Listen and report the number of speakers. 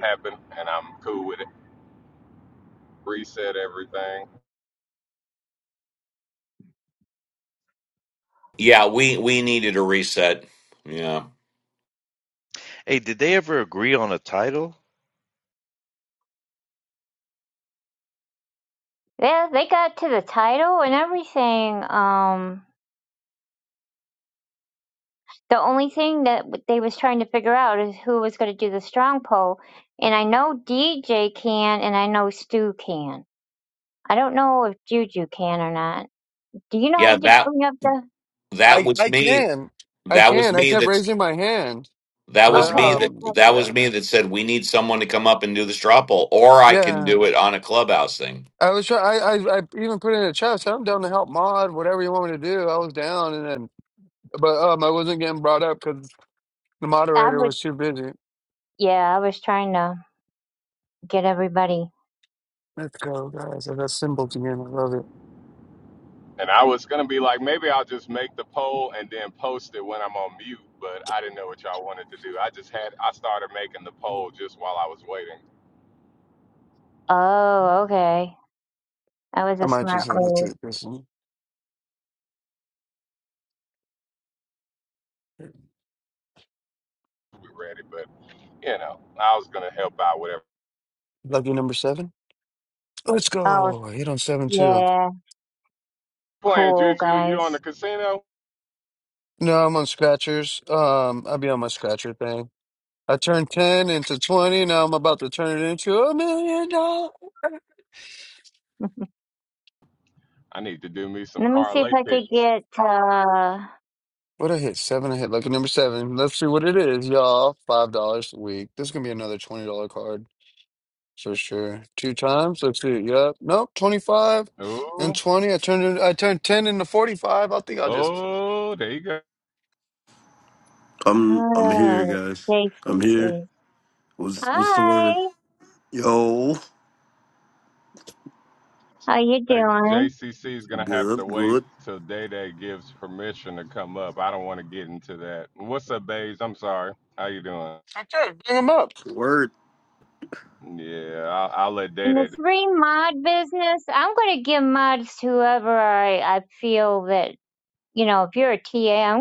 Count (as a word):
six